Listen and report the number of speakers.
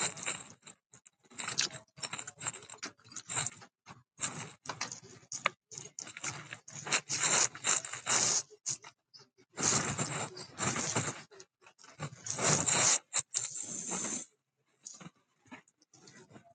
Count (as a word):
zero